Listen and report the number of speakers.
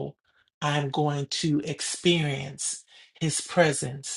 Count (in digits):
1